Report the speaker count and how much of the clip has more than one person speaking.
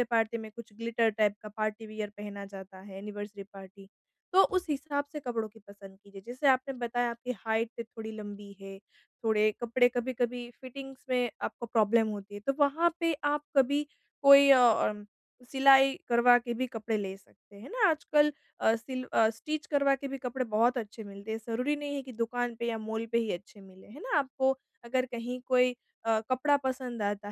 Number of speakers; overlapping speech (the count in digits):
1, no overlap